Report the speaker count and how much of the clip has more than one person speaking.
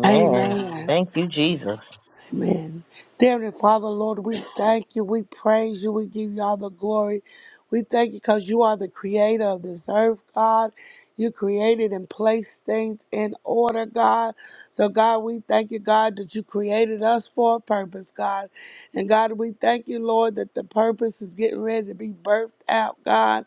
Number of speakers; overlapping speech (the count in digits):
2, about 2%